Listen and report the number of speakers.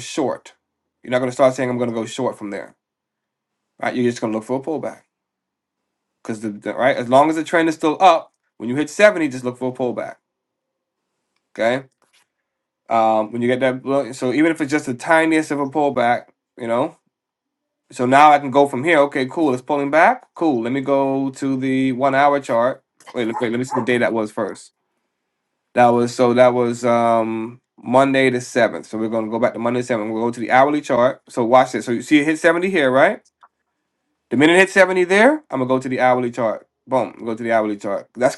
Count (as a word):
one